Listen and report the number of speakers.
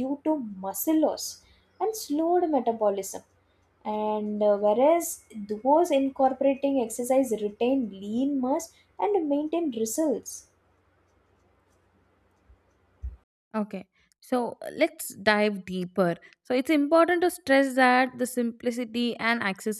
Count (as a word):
two